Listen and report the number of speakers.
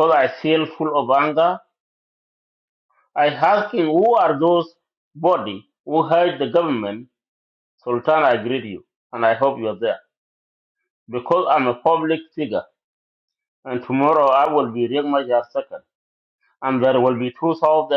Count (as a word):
one